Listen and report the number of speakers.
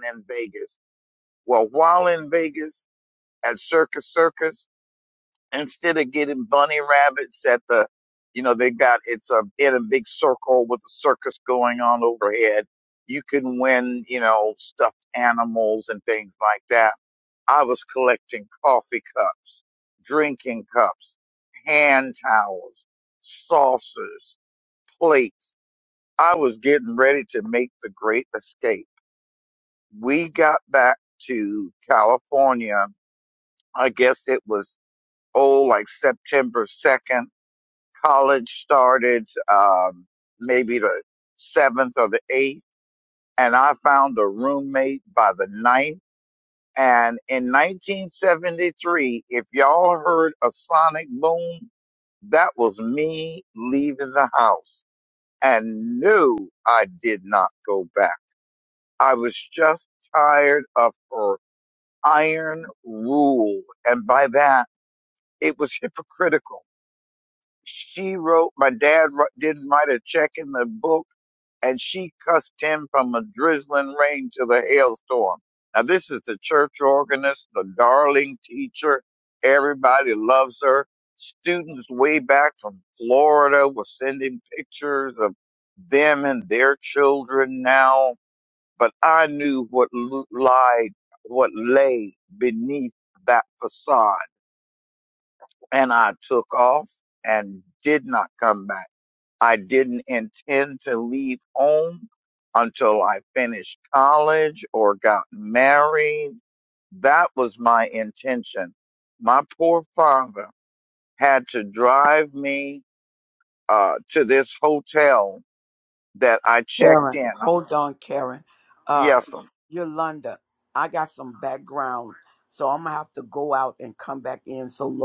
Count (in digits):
2